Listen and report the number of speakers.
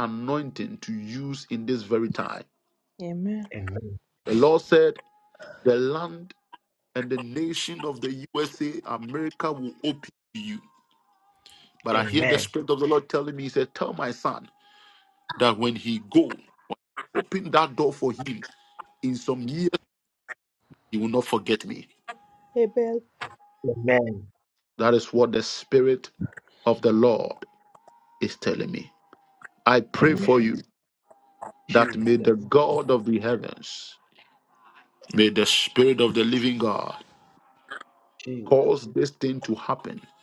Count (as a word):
three